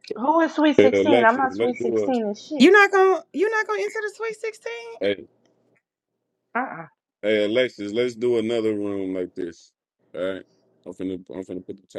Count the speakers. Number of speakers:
3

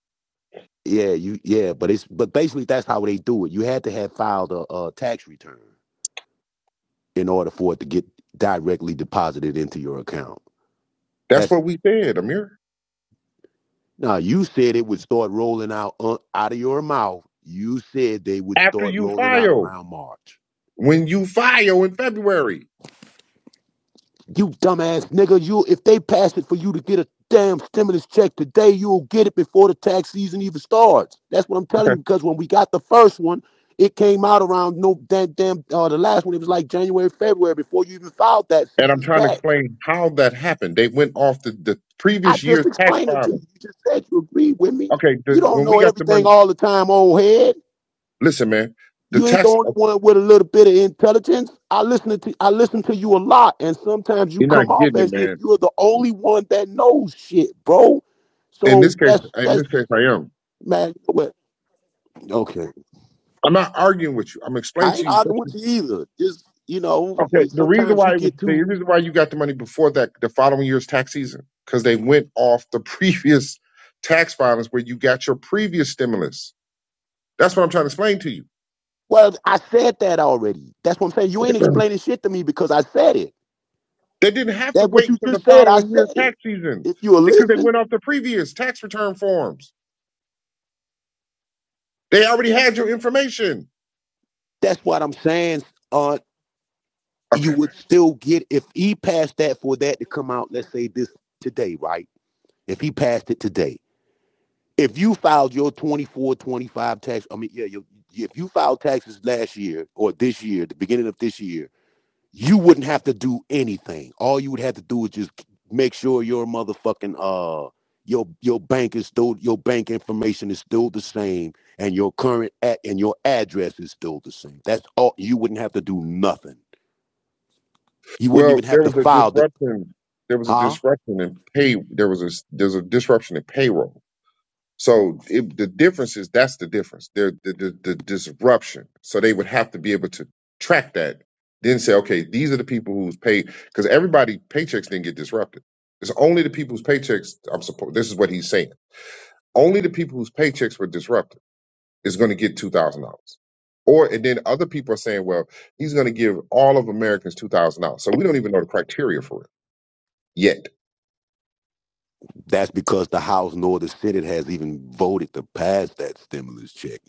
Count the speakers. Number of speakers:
2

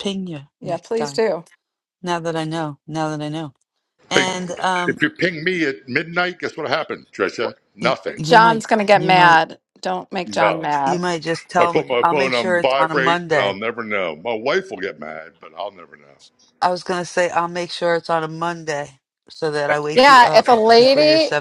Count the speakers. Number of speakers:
3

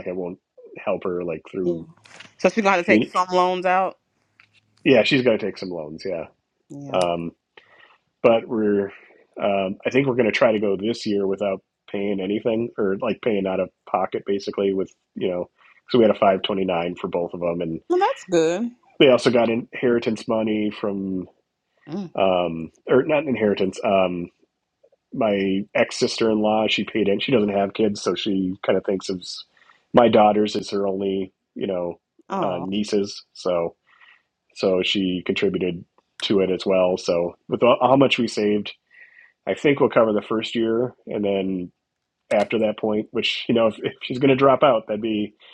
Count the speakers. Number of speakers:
2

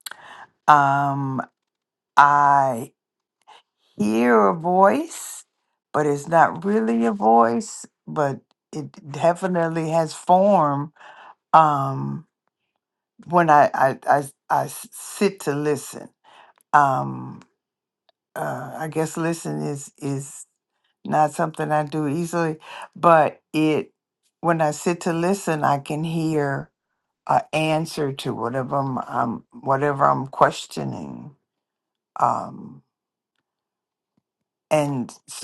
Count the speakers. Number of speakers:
1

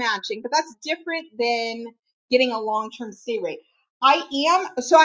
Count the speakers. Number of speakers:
1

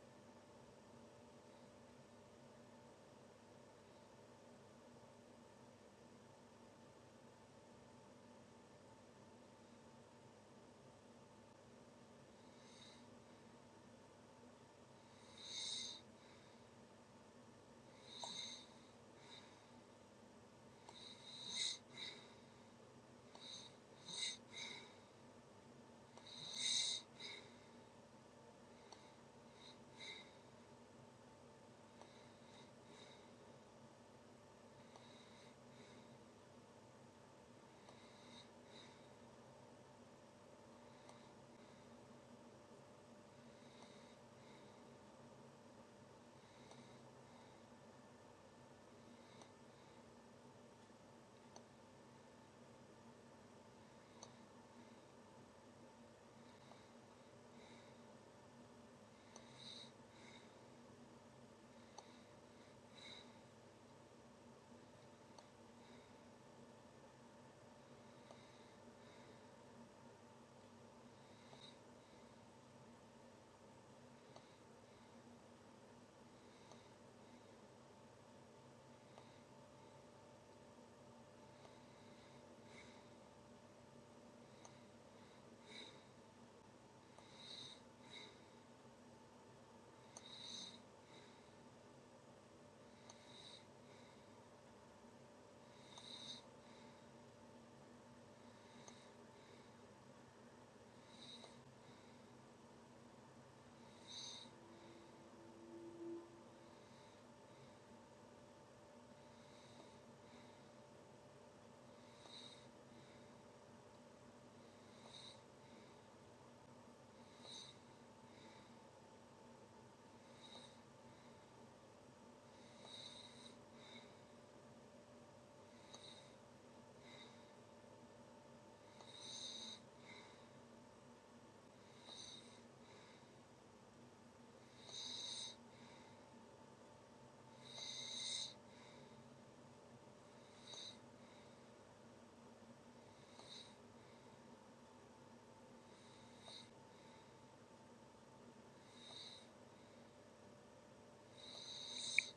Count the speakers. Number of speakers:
0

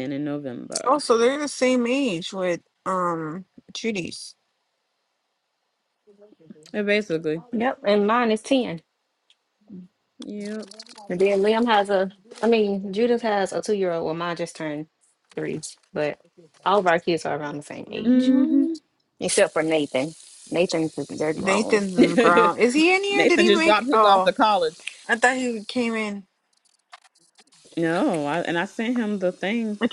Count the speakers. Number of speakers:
3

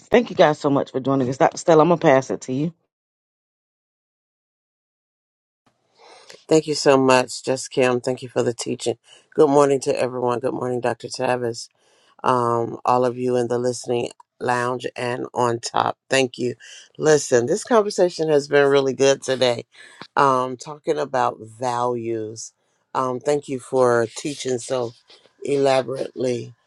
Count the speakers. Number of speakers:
2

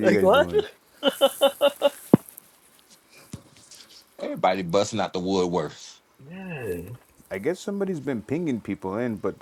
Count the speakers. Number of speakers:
3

